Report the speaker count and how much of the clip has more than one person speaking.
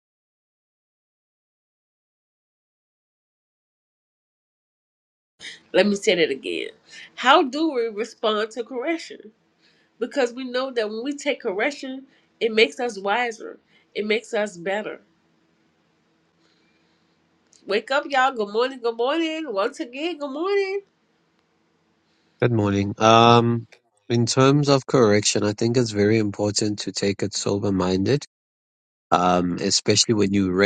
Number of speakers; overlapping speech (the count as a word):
two, no overlap